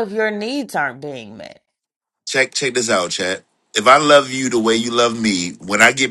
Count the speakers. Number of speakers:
2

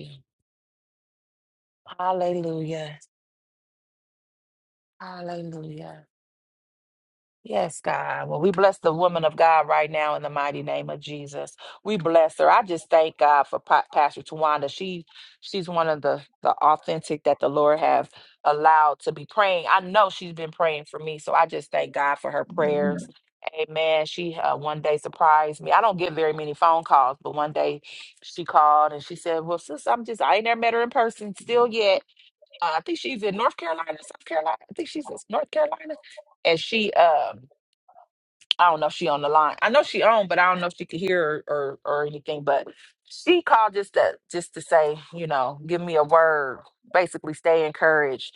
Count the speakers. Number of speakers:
1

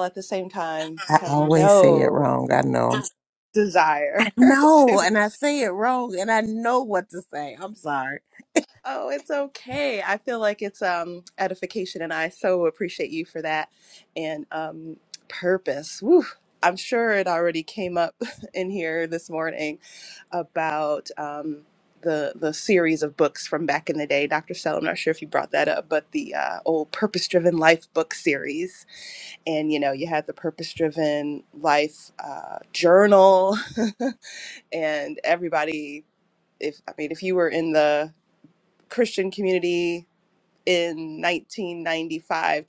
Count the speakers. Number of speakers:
2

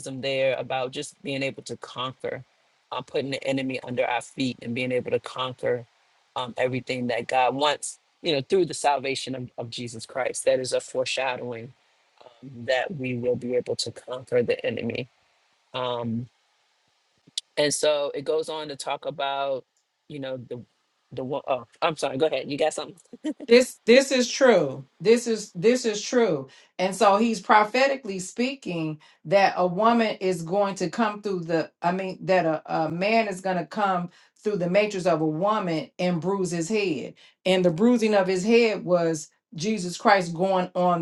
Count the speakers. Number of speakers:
2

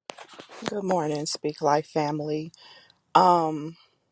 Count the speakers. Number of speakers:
1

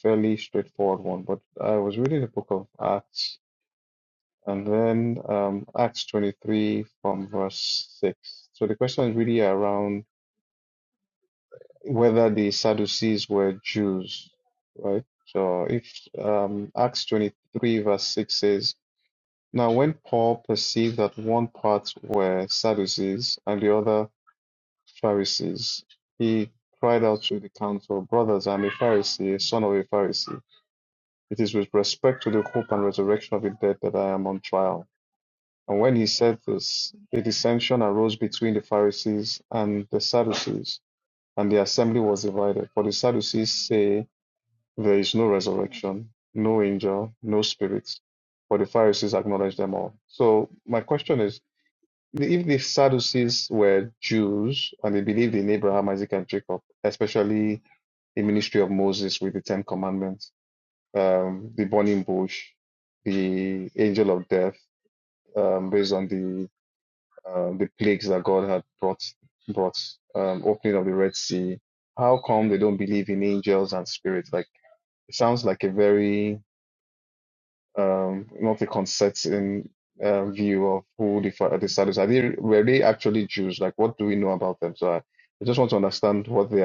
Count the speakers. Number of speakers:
1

